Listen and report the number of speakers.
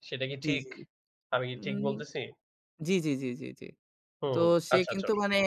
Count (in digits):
2